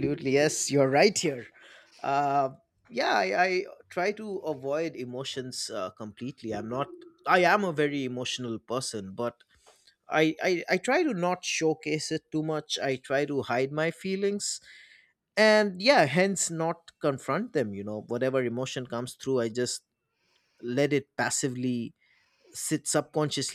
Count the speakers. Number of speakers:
one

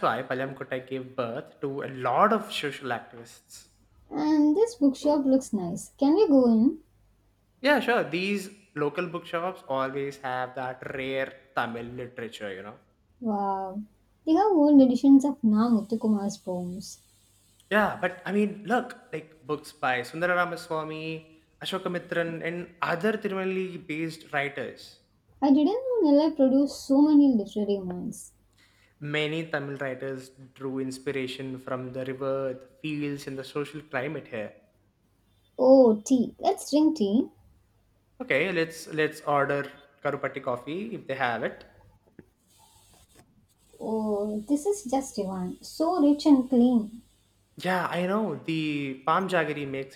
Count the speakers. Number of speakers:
two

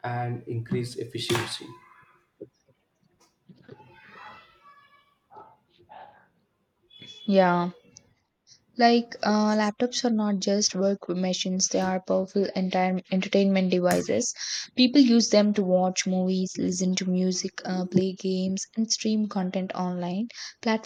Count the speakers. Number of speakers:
two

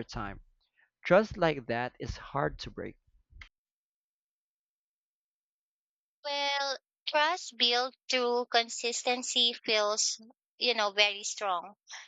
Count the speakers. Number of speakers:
two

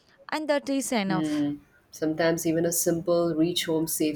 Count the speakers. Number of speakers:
two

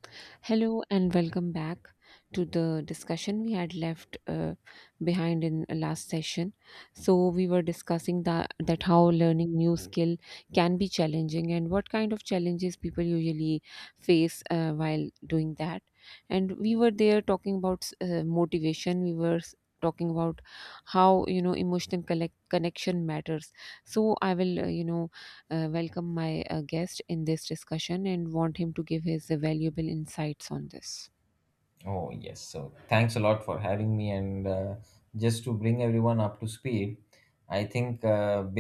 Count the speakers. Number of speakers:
two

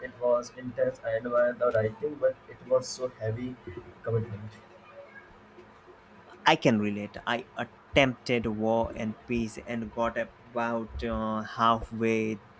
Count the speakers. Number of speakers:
two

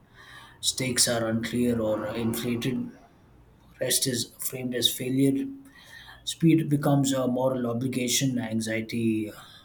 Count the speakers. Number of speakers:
one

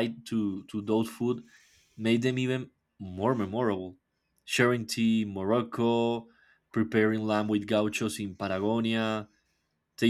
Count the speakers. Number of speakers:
one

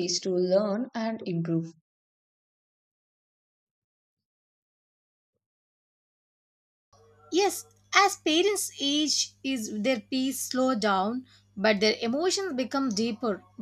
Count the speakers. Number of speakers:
two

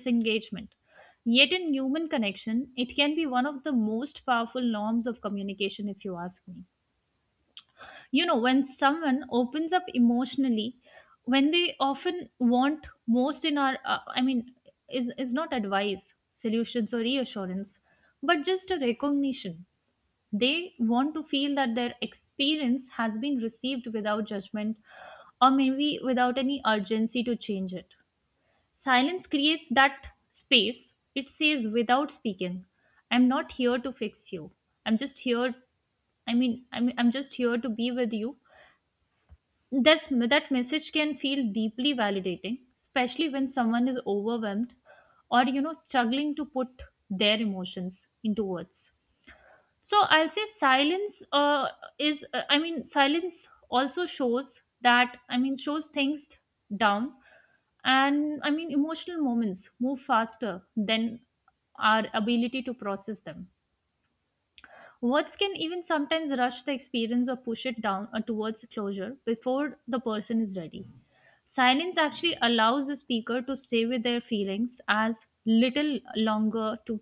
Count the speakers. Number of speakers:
one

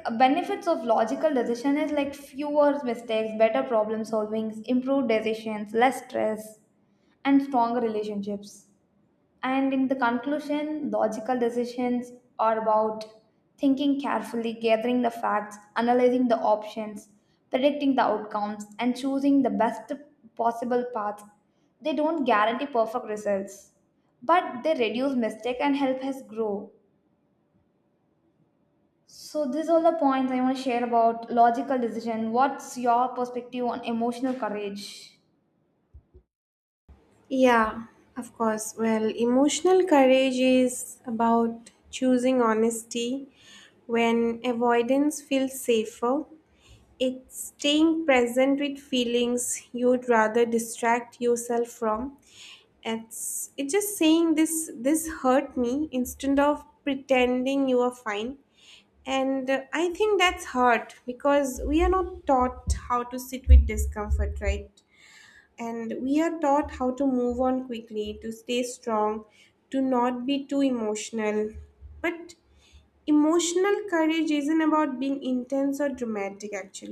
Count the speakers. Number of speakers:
two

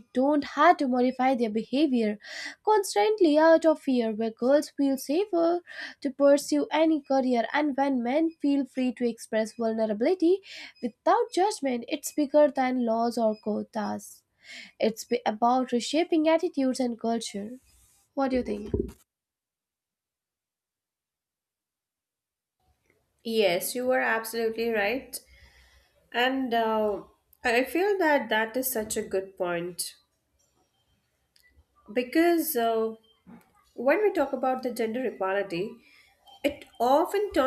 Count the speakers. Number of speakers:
two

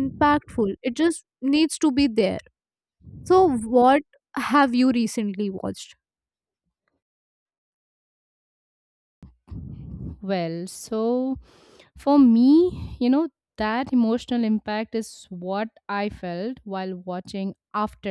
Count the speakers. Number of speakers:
two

